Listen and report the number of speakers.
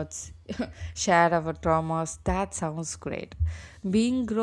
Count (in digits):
1